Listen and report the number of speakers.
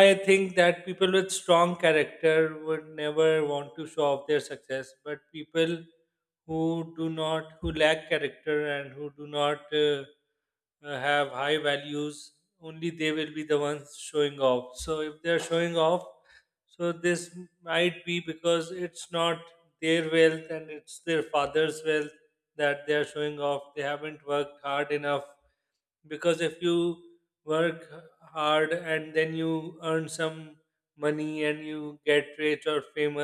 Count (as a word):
one